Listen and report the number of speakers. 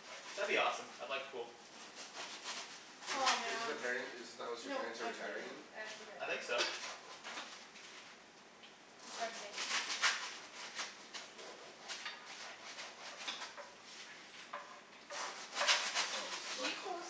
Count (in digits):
3